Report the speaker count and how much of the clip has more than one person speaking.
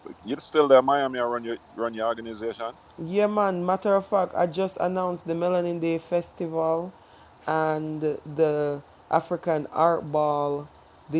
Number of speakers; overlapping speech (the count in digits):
2, no overlap